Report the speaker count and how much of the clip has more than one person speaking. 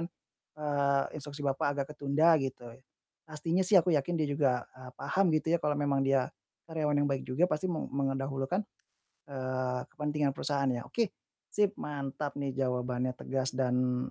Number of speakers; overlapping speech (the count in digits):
1, no overlap